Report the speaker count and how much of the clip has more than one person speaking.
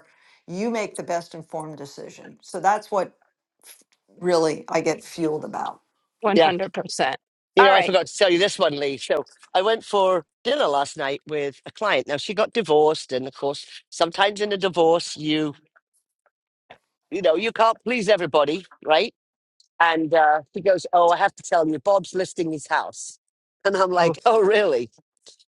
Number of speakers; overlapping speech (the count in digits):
3, about 3%